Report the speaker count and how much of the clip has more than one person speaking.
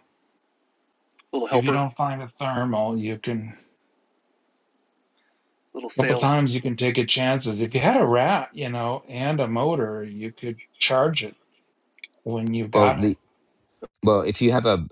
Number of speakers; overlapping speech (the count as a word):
three, about 7%